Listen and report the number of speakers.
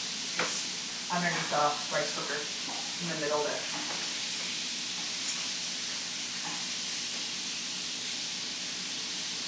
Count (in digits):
1